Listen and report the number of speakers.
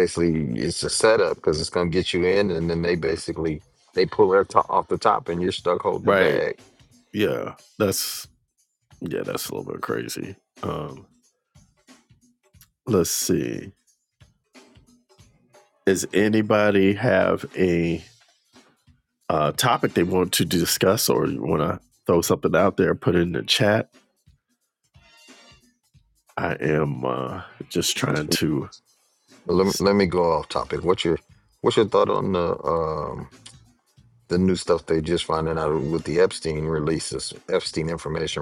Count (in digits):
2